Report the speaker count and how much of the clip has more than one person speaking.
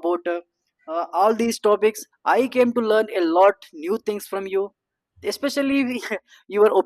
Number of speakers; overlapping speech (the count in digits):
1, no overlap